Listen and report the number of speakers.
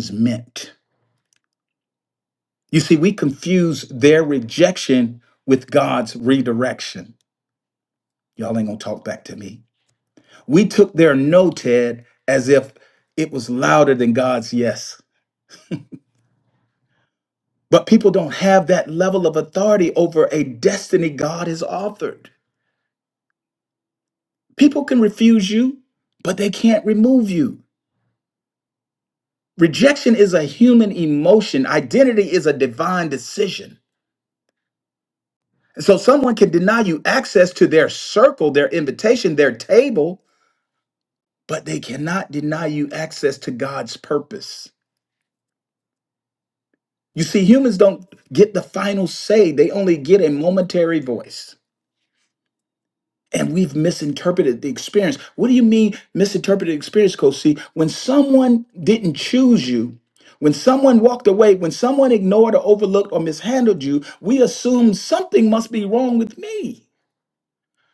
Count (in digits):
1